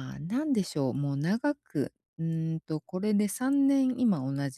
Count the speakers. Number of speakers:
1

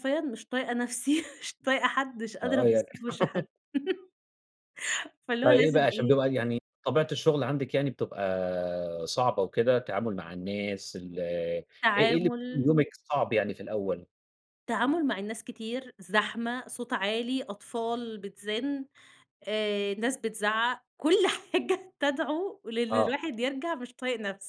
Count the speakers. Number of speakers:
2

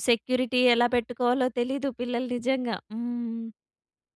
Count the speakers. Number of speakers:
1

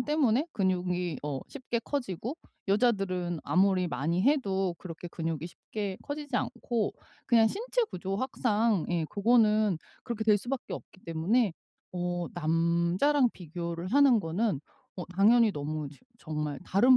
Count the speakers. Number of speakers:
1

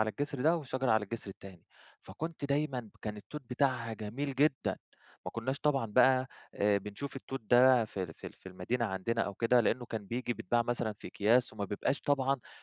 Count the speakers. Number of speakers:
1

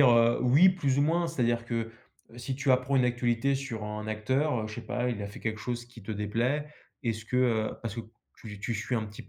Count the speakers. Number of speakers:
1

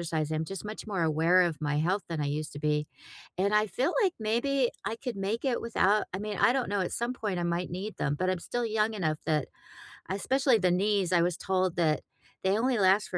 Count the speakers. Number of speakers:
1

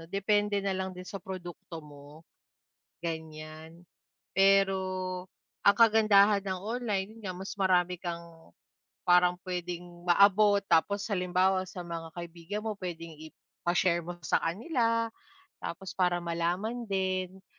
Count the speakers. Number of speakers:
1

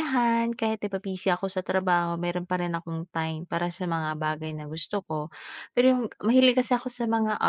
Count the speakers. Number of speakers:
1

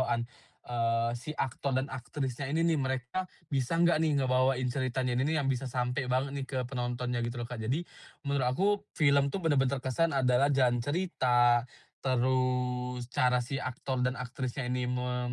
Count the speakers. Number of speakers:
1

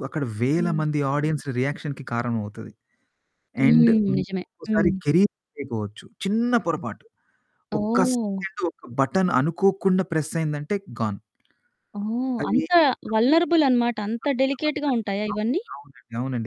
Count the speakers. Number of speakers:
2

